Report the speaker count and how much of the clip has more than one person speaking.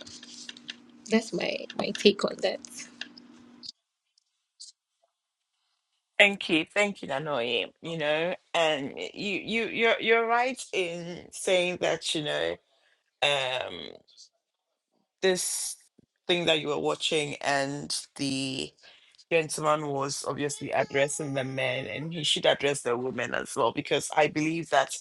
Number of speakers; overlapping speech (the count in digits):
2, no overlap